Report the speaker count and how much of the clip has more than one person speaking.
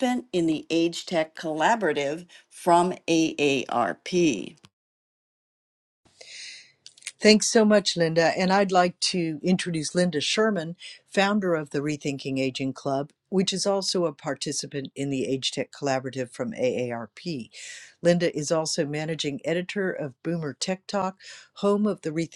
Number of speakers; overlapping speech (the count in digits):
2, no overlap